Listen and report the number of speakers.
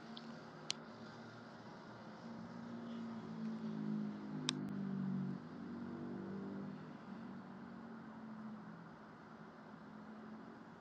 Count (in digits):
0